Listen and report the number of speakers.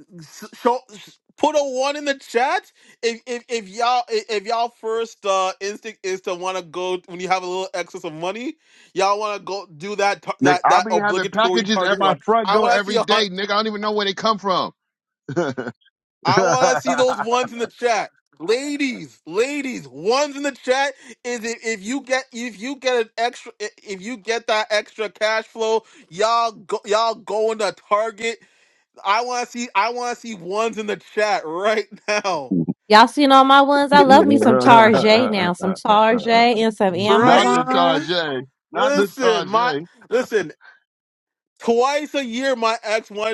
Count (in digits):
3